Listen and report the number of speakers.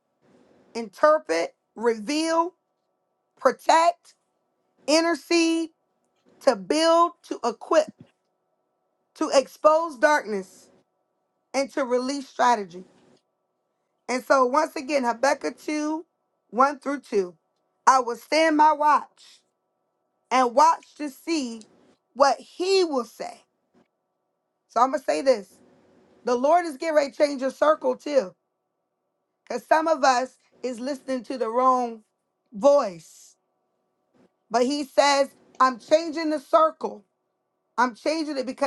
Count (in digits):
1